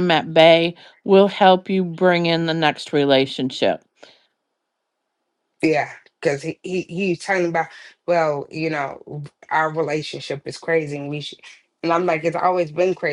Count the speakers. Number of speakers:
2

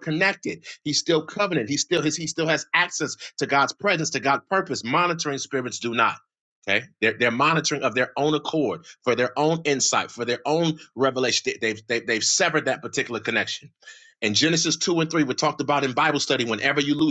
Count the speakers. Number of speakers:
1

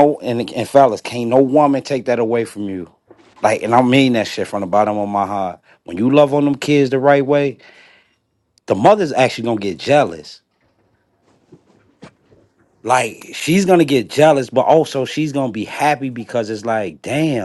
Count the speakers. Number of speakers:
1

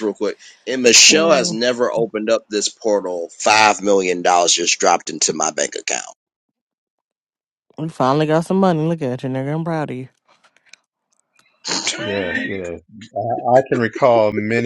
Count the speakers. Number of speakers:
3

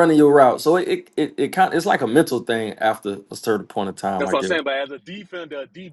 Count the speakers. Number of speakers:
2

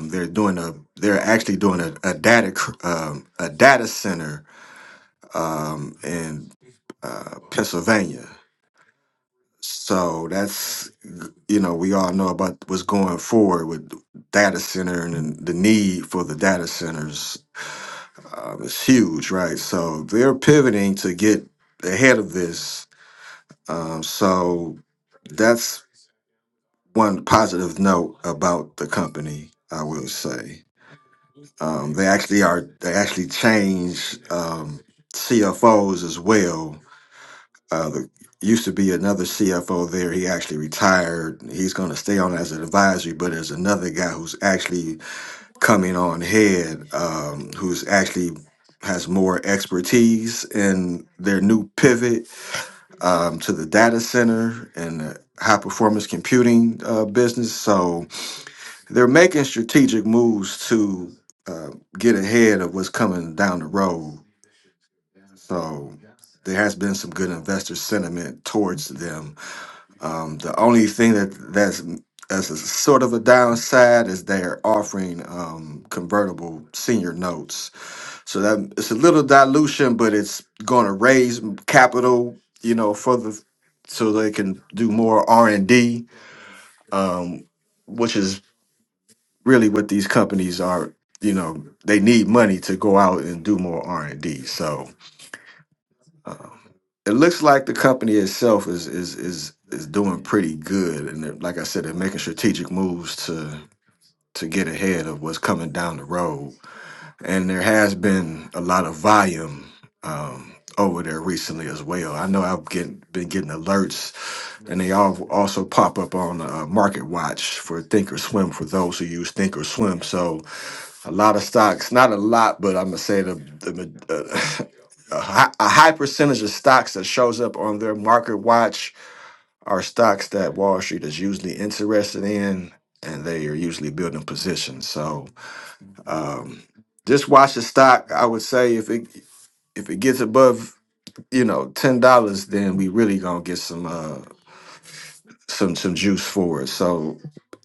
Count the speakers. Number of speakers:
1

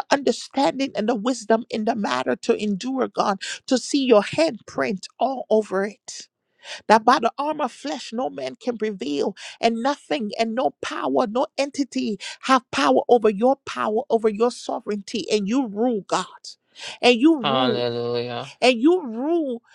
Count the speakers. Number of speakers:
2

